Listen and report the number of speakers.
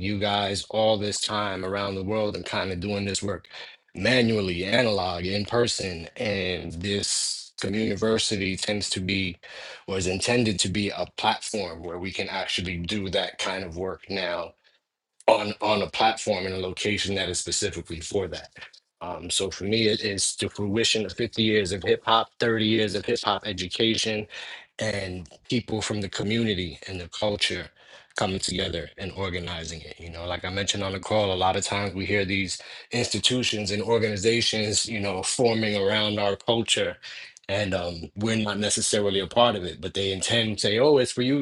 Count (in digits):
1